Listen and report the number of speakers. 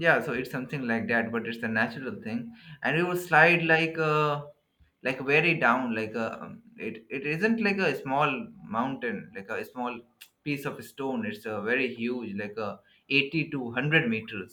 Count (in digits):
1